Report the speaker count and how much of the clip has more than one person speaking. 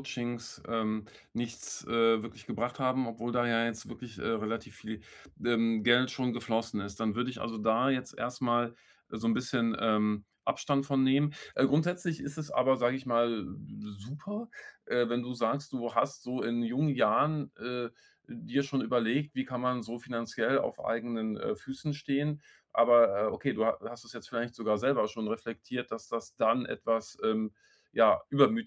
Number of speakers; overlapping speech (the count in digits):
1, no overlap